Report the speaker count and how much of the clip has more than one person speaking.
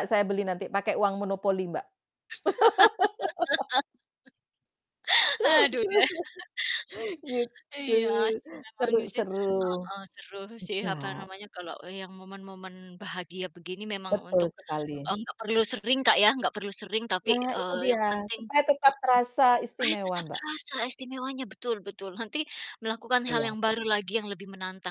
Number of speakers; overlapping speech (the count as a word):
two, about 13%